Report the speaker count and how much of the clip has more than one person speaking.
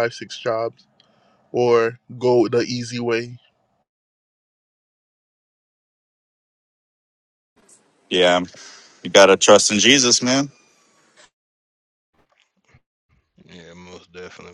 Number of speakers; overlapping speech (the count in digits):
3, no overlap